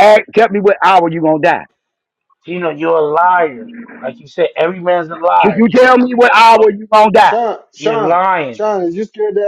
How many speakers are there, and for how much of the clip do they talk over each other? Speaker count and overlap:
3, about 8%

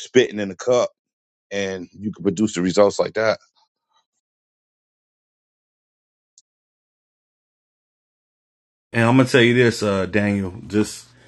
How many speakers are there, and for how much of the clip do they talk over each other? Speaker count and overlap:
2, no overlap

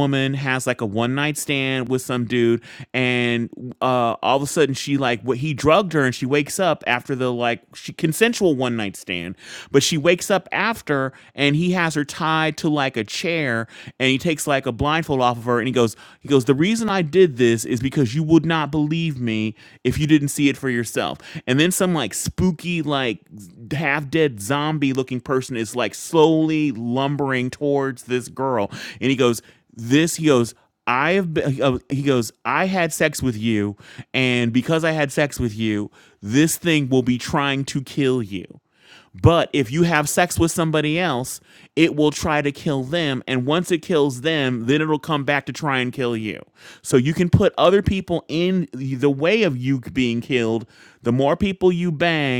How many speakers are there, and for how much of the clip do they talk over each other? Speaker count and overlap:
1, no overlap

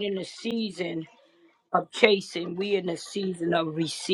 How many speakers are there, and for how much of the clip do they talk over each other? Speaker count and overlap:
1, no overlap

